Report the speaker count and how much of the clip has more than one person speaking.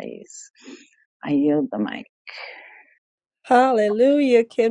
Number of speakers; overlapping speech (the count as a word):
two, no overlap